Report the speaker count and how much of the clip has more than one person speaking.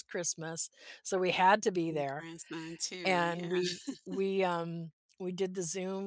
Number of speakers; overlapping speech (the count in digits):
2, about 14%